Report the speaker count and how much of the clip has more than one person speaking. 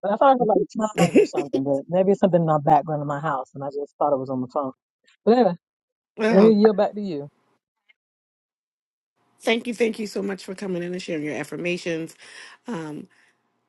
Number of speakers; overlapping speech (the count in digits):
2, about 3%